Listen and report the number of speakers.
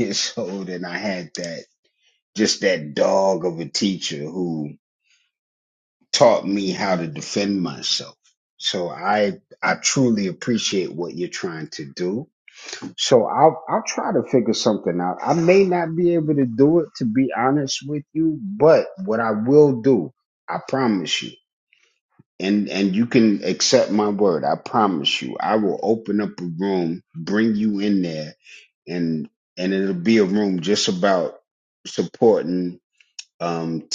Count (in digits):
1